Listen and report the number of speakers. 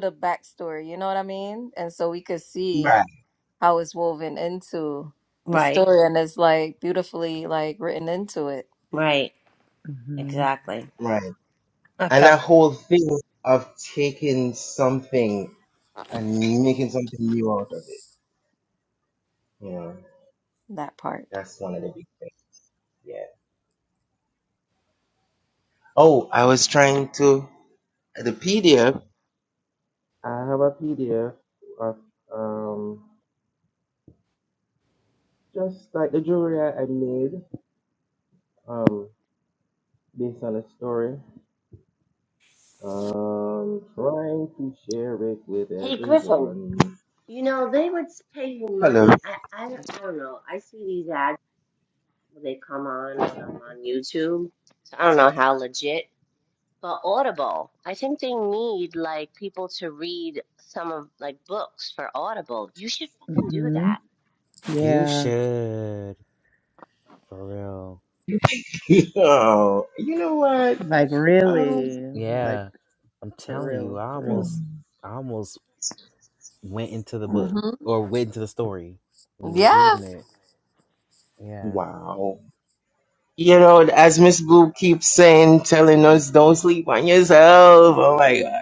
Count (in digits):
5